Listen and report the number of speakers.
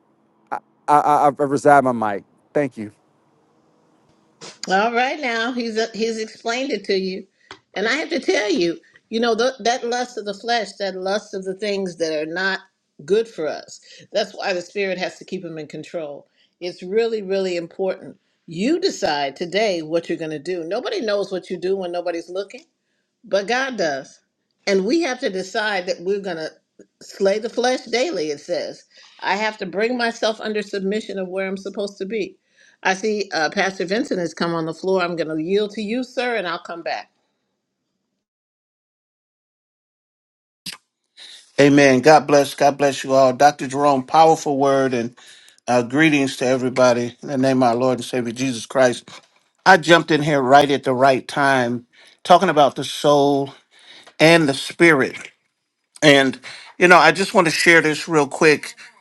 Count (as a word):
three